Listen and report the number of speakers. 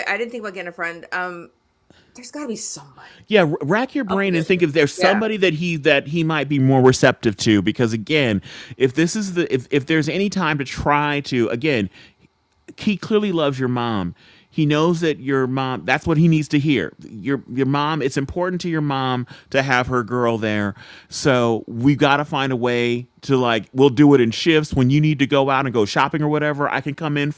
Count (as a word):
two